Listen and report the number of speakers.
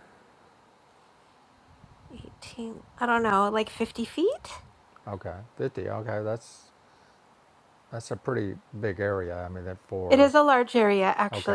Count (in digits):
2